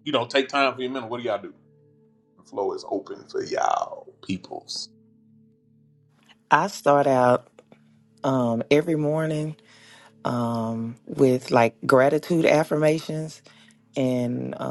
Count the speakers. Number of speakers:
2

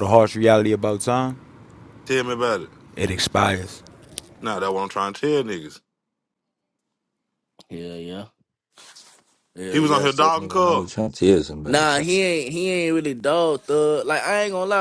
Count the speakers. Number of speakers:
4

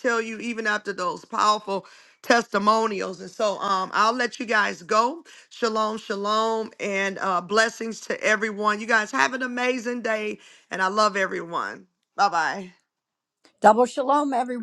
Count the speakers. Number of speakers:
2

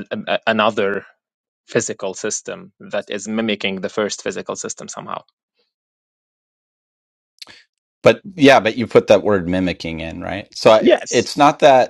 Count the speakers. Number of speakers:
2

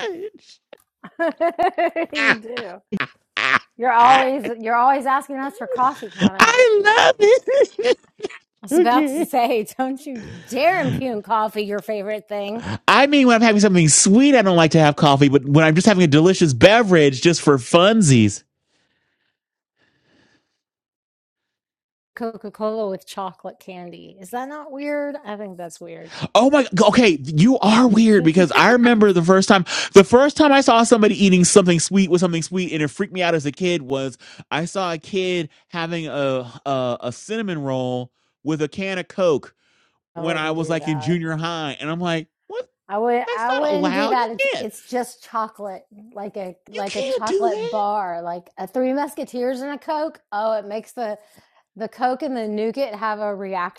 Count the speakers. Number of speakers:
2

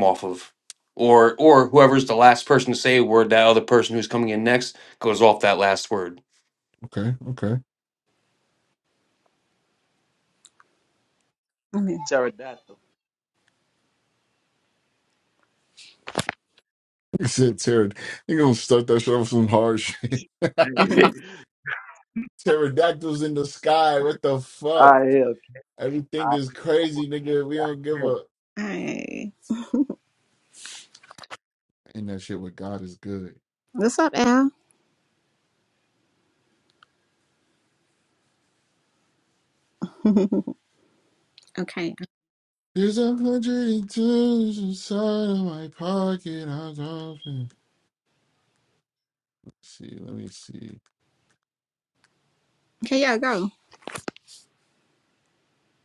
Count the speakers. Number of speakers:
4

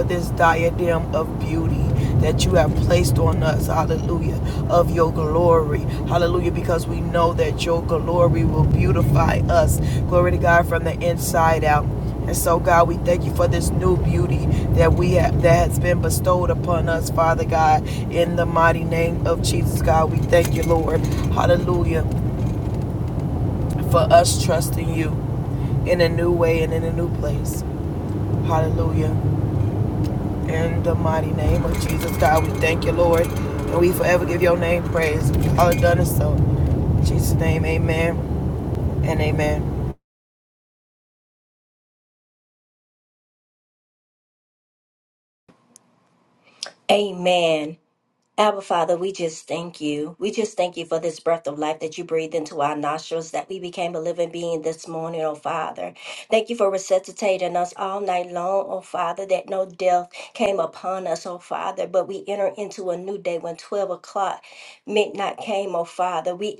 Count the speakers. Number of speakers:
2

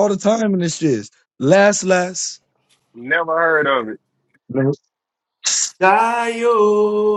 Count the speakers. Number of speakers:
3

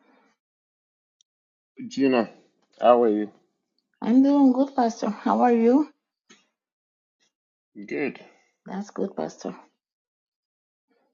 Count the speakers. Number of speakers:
2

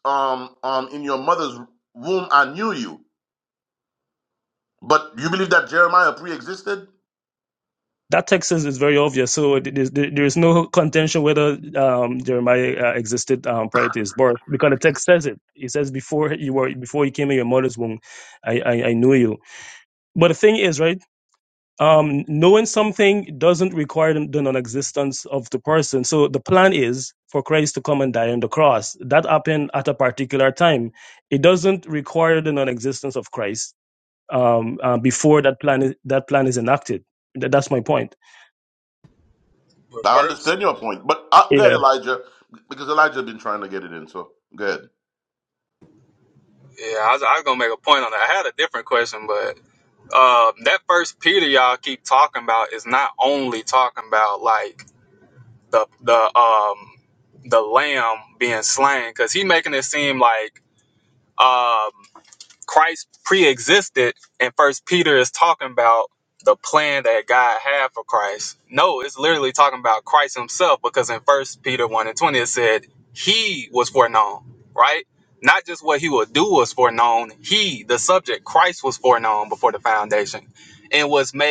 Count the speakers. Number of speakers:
3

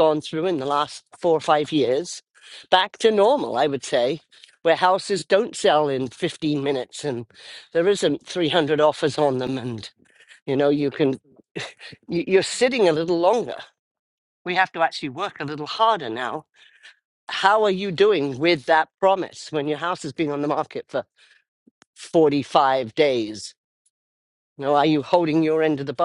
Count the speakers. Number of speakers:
1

